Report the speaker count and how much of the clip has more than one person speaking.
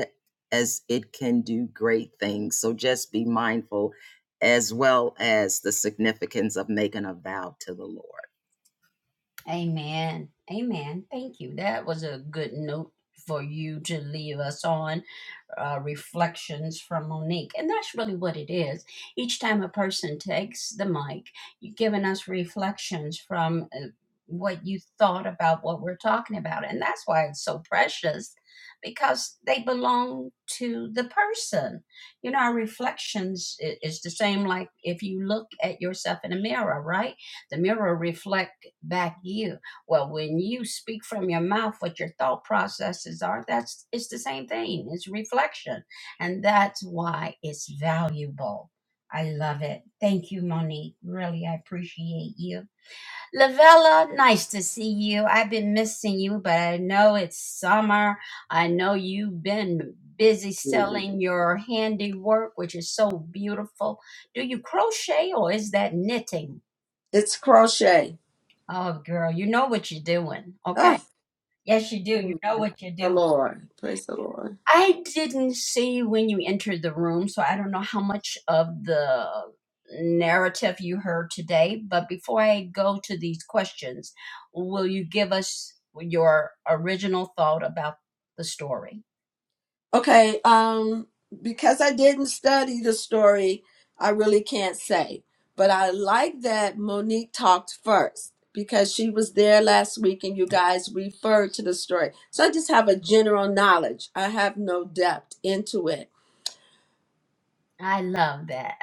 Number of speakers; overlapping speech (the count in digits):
3, about 1%